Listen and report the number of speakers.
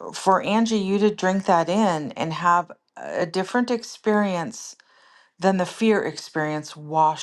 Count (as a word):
one